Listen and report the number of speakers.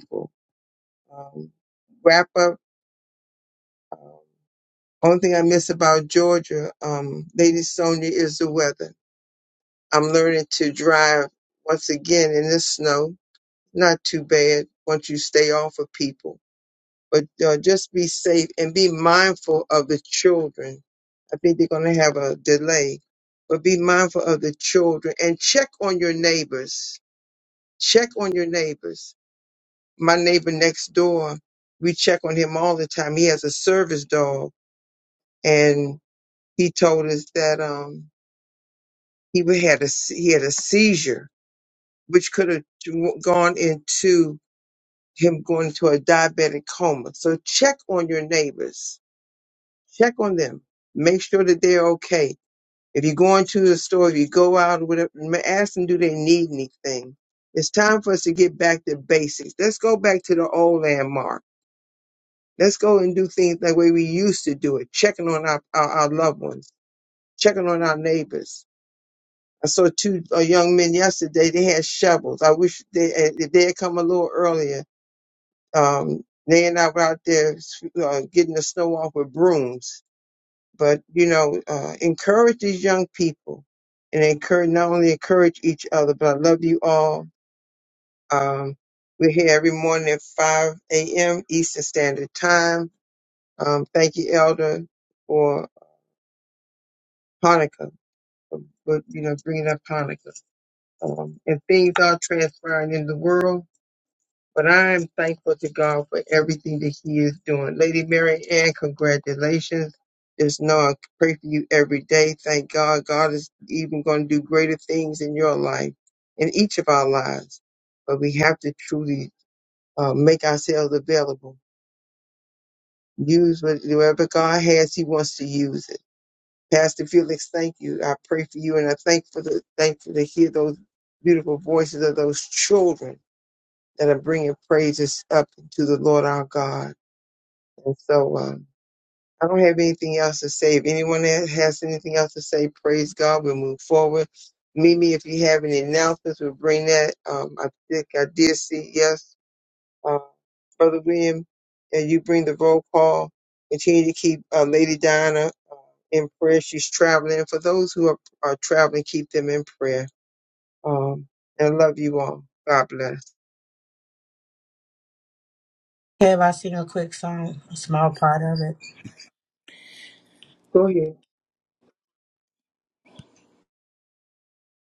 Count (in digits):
2